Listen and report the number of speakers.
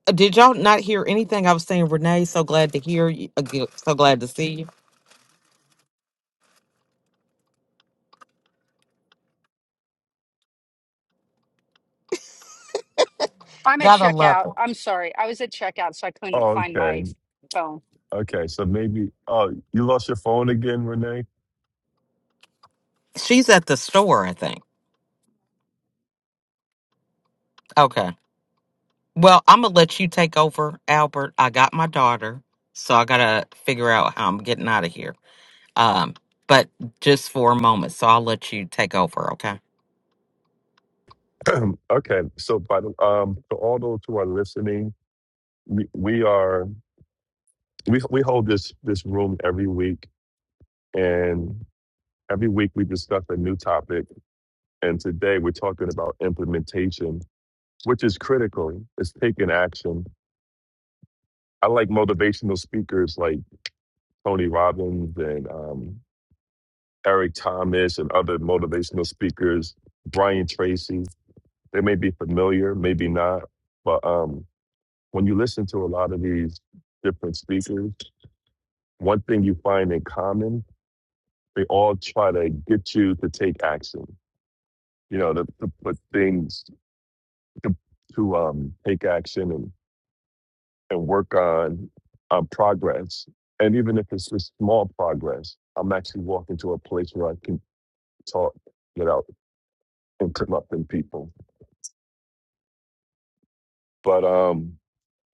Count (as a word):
three